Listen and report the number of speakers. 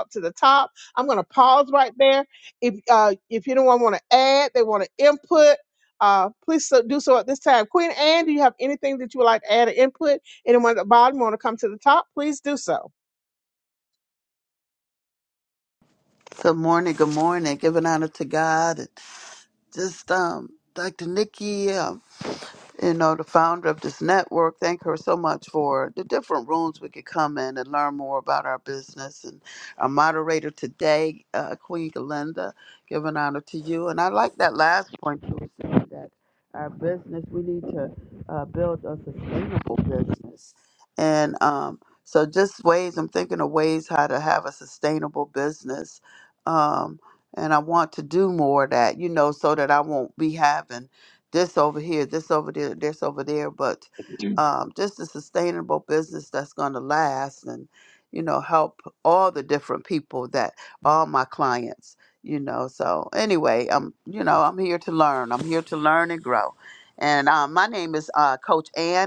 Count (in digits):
2